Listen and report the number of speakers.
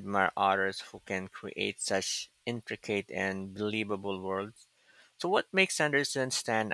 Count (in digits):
1